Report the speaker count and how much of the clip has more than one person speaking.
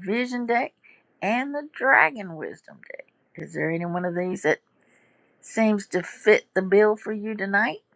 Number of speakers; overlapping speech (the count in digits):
1, no overlap